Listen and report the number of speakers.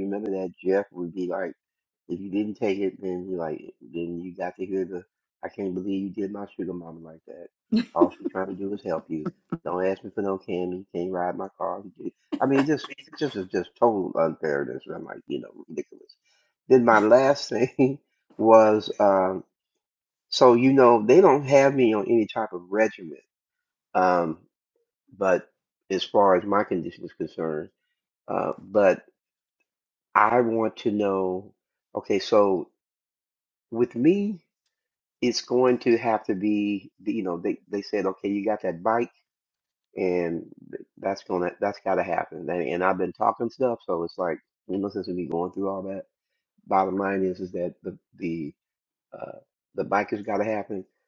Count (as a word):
one